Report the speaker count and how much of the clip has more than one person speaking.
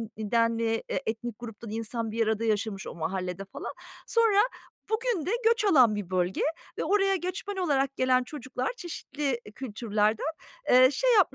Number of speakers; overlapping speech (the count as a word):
one, no overlap